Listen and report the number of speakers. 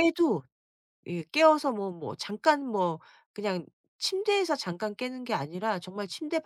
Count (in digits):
1